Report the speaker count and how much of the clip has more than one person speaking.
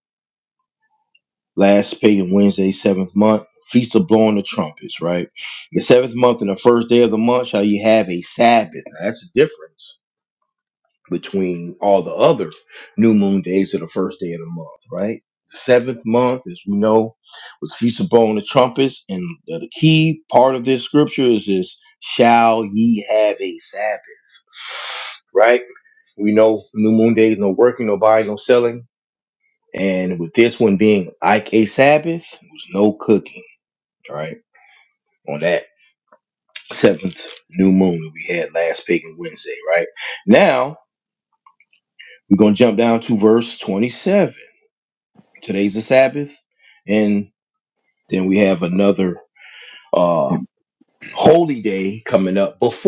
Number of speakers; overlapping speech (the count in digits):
1, no overlap